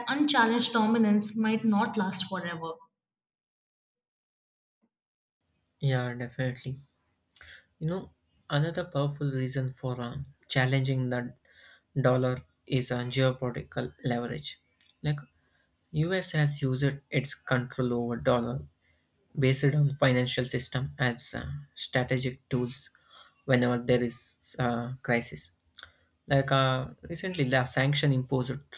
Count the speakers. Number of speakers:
2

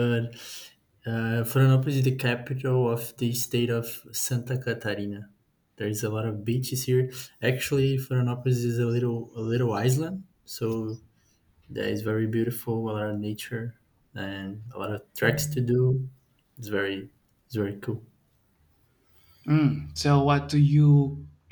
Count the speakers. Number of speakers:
2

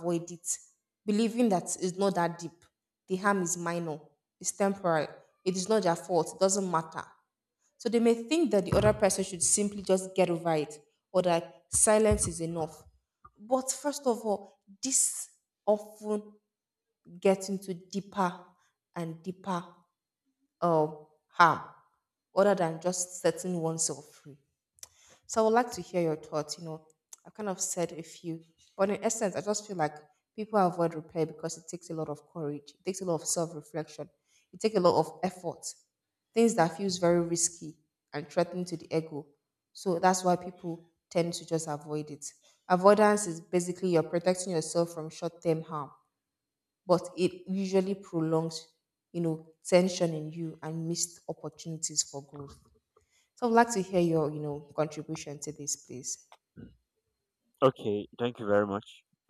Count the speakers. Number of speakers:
2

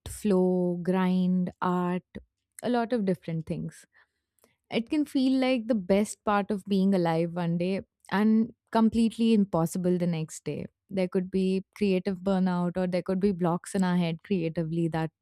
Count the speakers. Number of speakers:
1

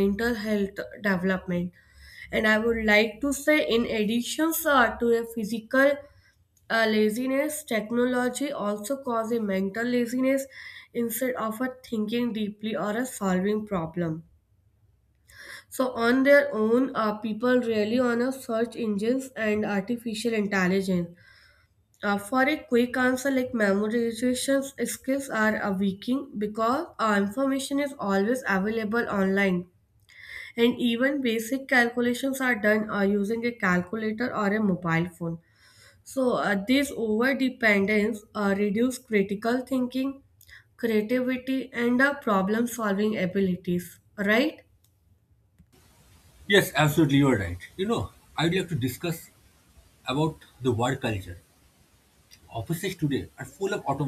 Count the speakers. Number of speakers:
2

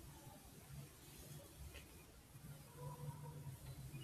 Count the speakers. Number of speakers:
0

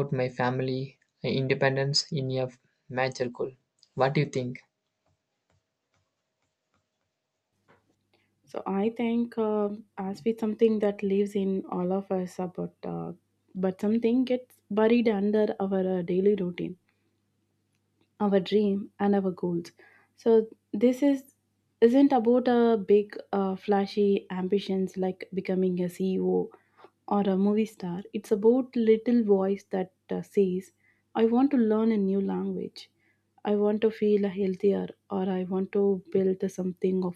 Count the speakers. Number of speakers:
2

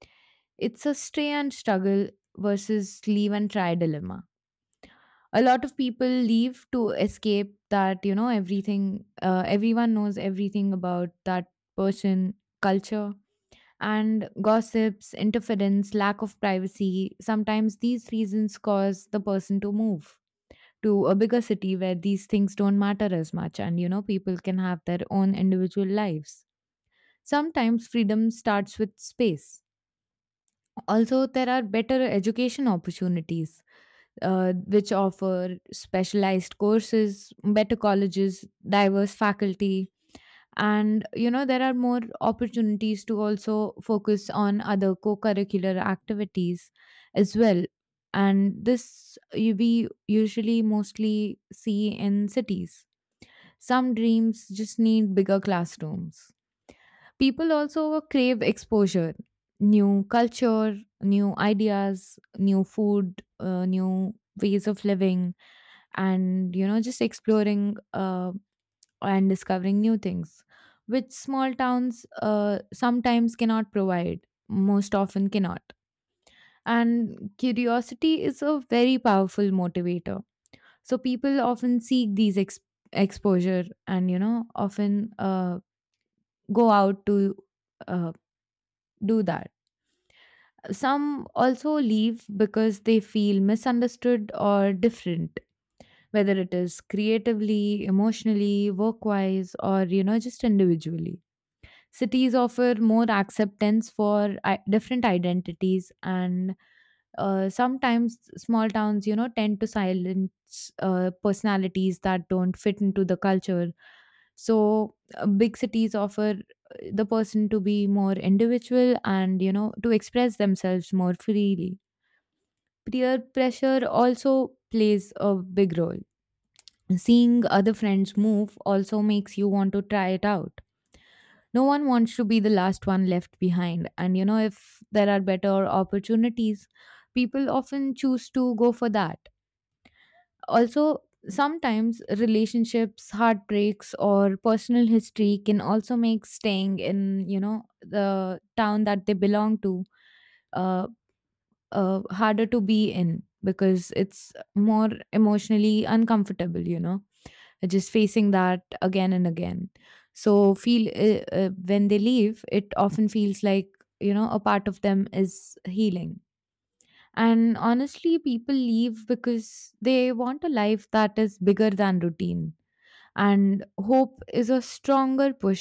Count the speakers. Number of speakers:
1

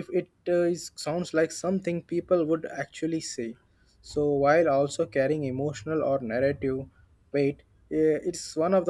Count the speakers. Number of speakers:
1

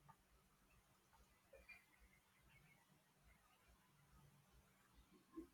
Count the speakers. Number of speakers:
0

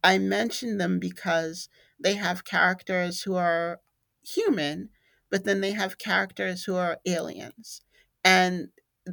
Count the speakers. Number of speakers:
1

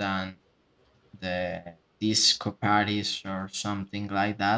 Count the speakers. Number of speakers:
1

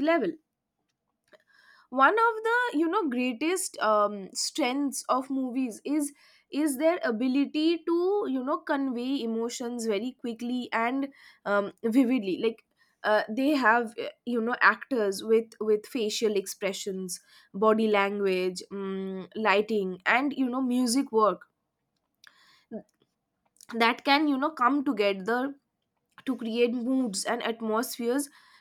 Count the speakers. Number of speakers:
1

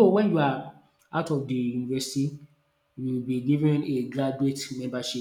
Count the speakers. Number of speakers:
1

